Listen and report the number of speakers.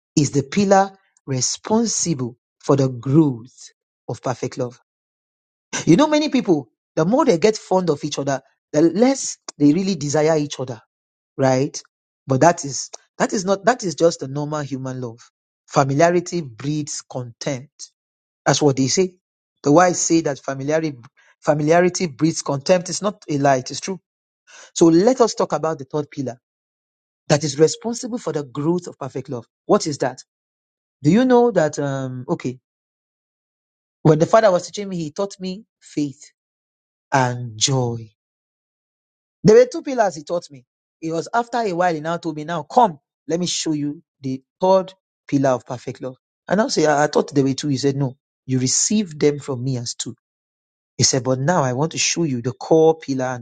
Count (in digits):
1